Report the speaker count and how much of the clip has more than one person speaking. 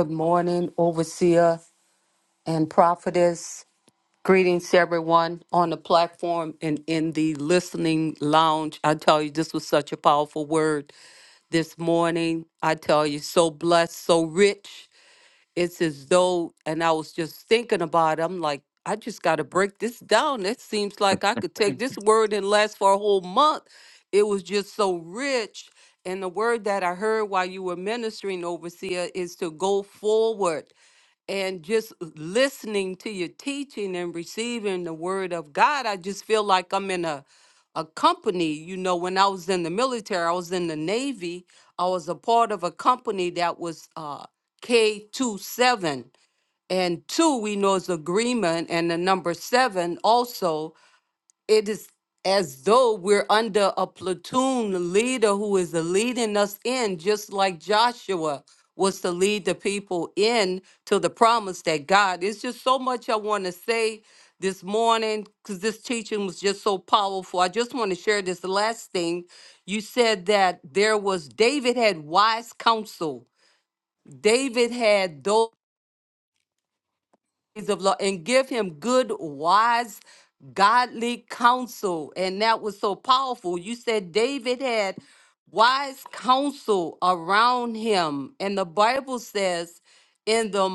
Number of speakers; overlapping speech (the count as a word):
one, no overlap